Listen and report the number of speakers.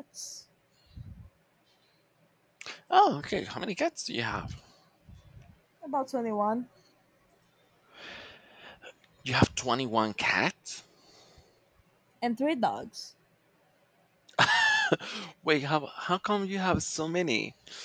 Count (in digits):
2